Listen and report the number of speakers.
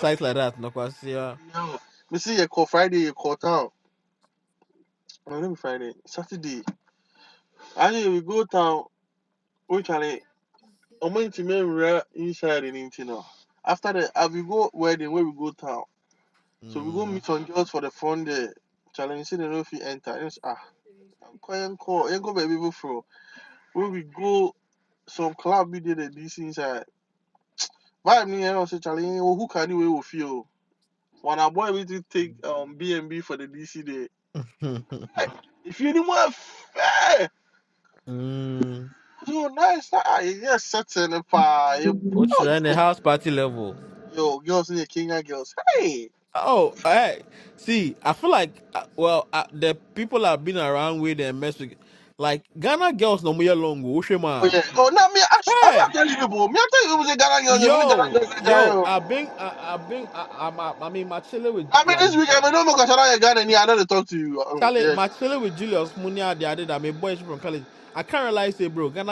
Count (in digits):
2